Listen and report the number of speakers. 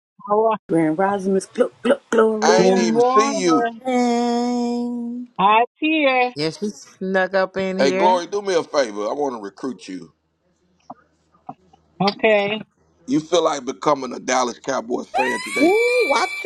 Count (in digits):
5